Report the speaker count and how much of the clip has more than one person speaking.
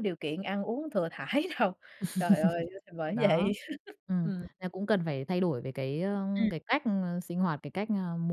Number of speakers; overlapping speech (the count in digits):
2, about 7%